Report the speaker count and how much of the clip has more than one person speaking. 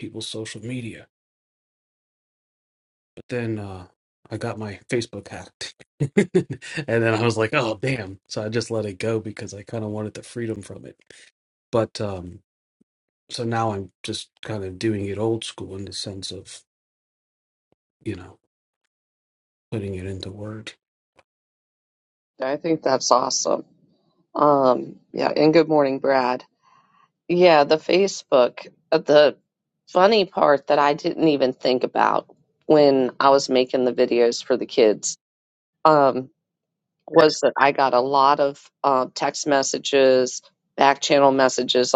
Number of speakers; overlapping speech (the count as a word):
two, no overlap